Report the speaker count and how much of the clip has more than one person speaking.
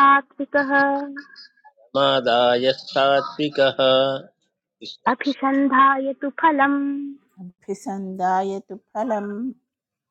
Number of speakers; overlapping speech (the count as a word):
three, no overlap